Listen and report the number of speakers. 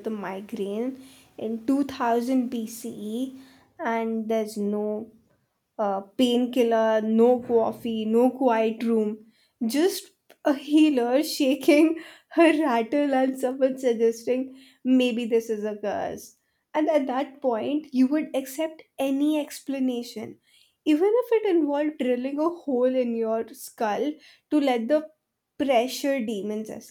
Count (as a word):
one